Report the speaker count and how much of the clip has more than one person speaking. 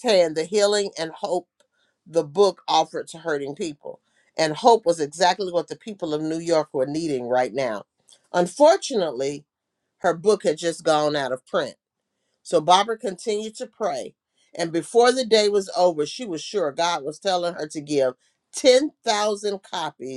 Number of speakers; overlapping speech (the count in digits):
1, no overlap